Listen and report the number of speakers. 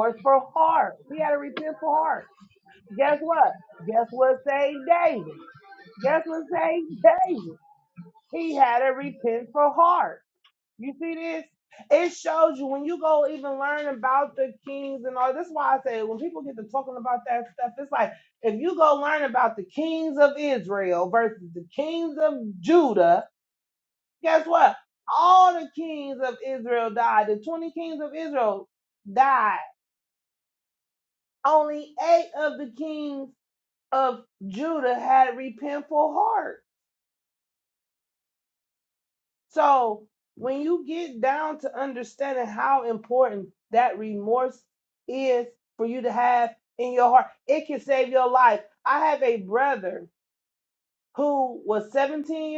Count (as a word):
one